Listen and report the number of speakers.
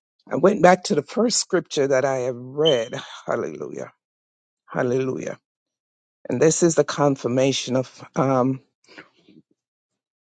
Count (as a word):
one